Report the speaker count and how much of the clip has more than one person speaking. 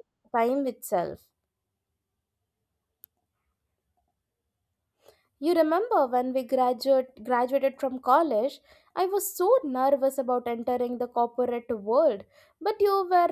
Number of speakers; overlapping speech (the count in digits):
1, no overlap